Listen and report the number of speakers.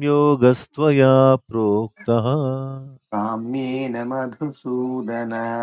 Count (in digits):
2